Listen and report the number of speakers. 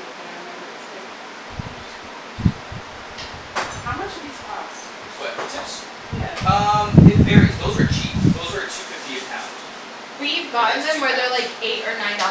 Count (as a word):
three